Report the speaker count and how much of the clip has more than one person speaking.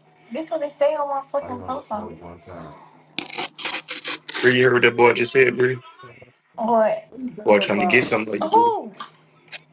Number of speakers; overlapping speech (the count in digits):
3, about 10%